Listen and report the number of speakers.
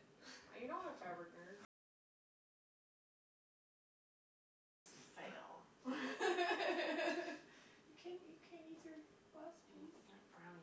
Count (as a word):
two